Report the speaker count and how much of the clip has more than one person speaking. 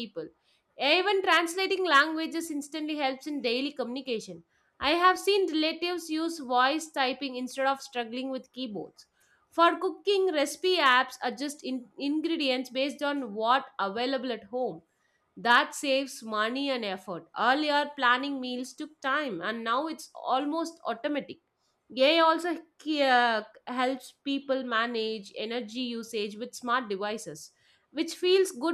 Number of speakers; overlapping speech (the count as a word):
one, no overlap